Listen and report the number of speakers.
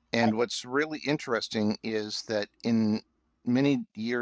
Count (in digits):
1